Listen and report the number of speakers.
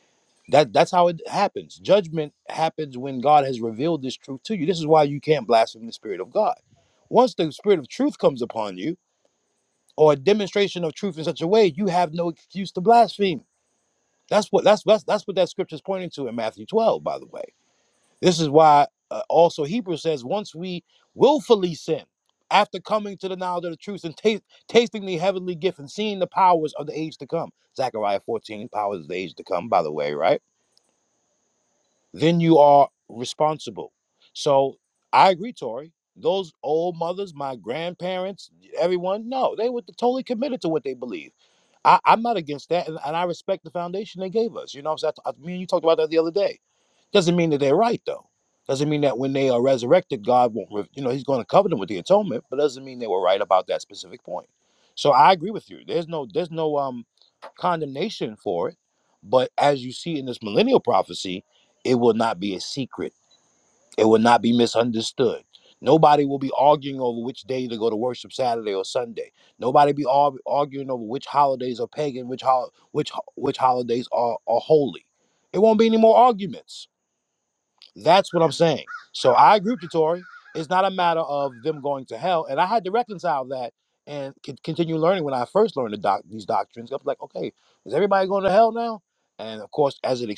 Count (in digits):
1